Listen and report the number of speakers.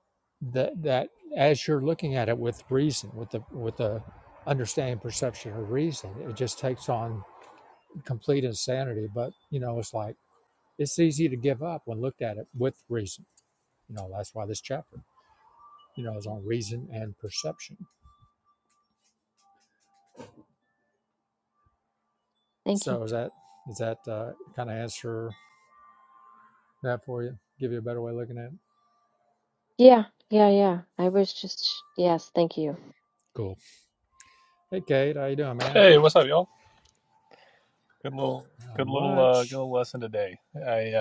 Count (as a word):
three